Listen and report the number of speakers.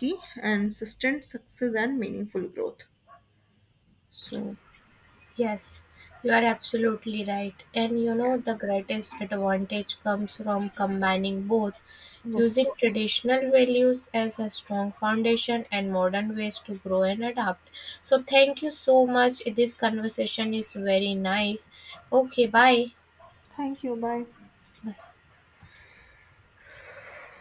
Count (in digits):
2